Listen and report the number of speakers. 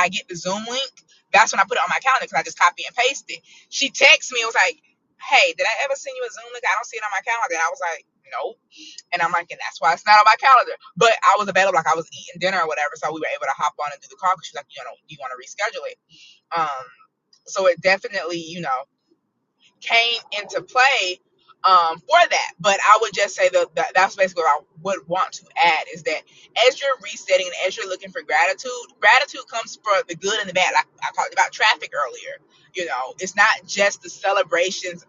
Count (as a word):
one